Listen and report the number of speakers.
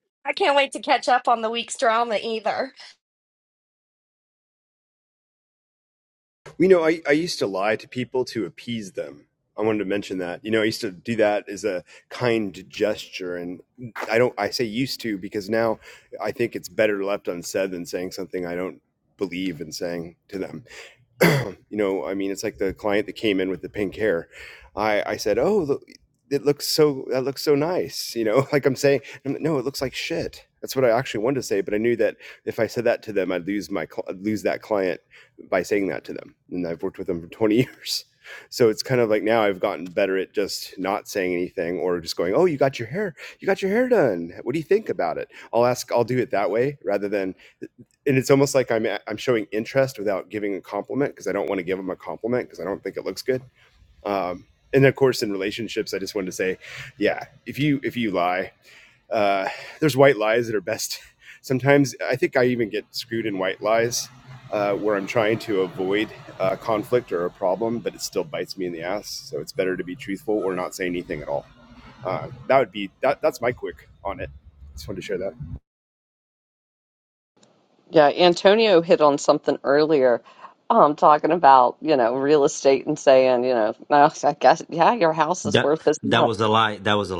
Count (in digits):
4